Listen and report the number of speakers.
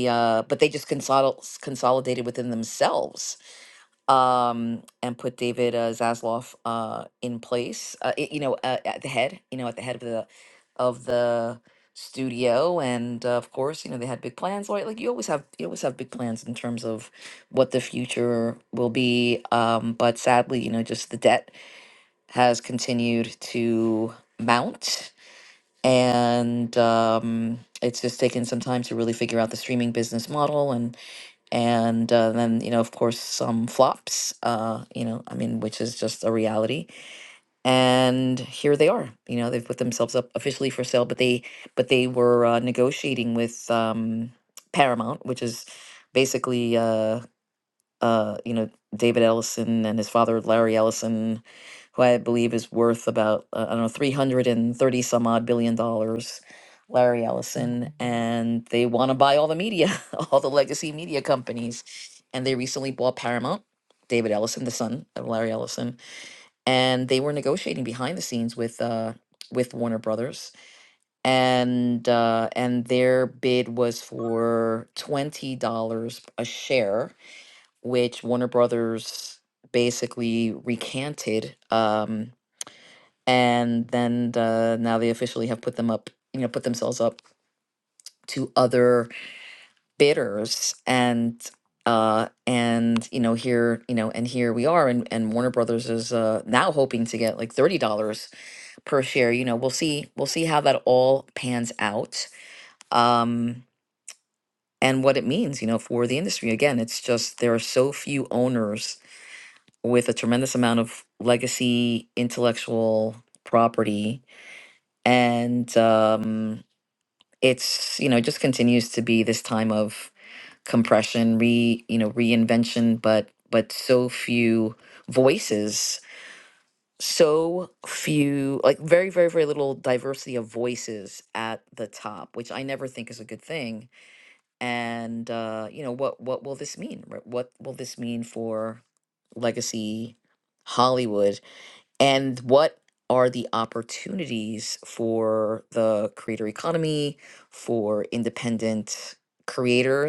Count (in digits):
1